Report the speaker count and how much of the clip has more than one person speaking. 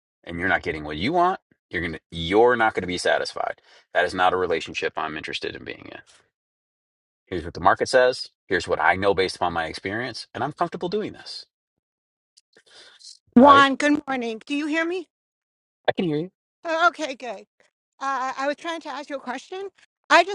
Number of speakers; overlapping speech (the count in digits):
2, about 1%